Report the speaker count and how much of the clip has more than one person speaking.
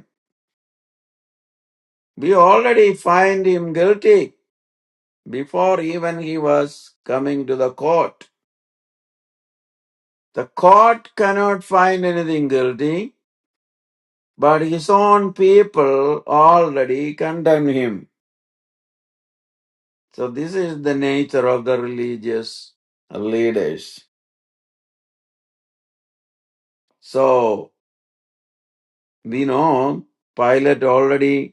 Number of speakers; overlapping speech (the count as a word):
one, no overlap